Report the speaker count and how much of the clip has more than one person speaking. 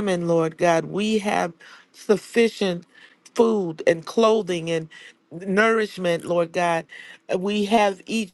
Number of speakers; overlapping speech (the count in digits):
1, no overlap